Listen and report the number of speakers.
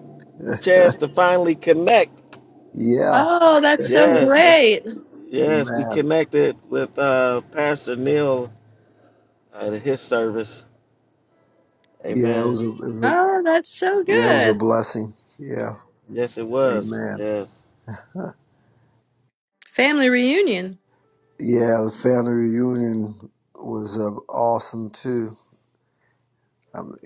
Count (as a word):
three